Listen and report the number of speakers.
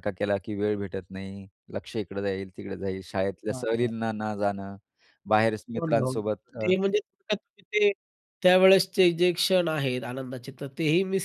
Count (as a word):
two